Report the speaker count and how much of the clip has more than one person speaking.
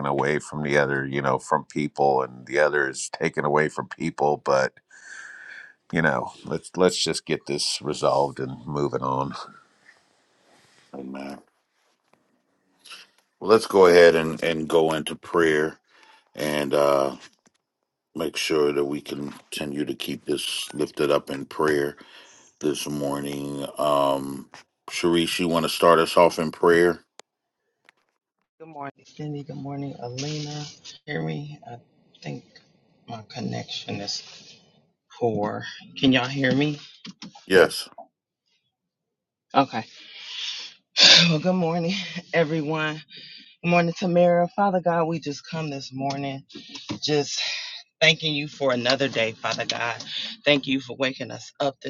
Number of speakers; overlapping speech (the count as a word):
three, no overlap